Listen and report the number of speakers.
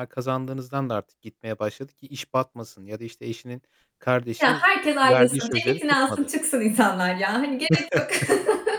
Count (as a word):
two